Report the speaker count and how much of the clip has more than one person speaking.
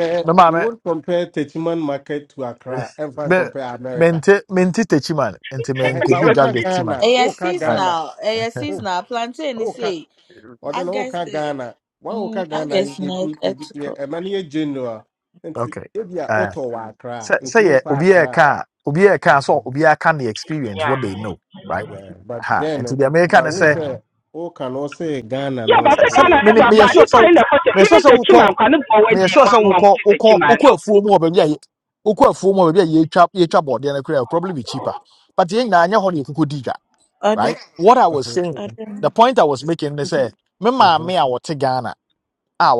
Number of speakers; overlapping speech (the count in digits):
4, about 32%